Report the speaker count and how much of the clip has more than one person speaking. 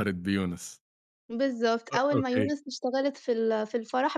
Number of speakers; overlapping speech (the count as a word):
two, about 14%